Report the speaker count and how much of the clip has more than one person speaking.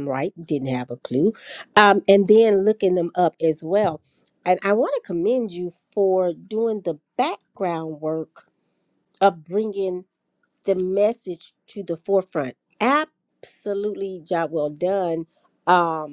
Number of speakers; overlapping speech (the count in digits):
1, no overlap